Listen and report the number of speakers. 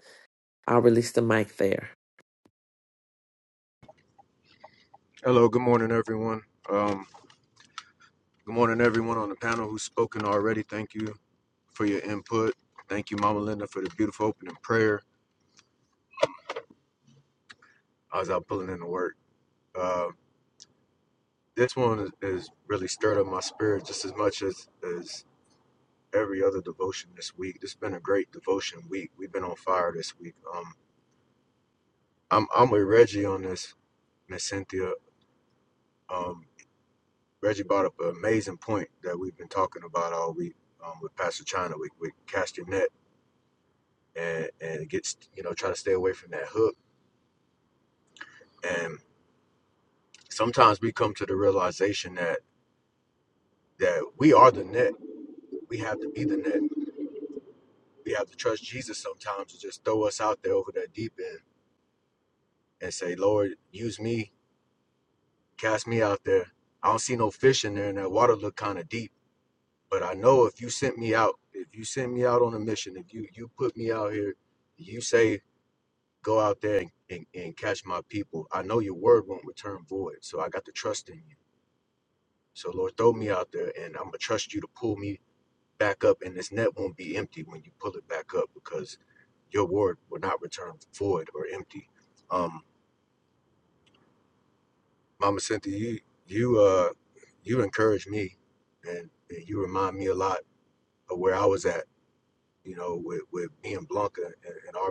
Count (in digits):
2